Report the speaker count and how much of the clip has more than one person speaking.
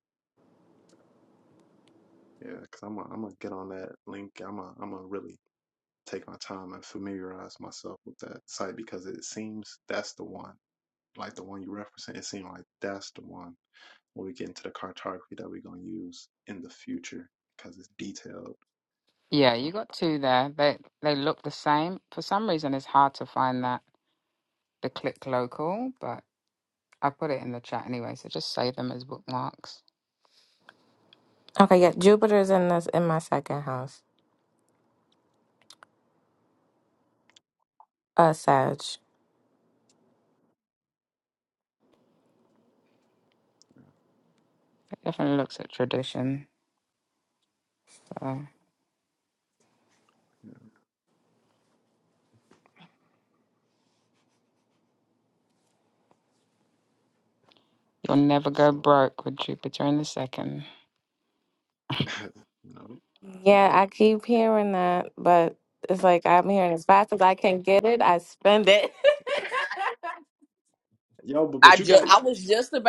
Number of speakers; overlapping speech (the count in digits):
4, about 2%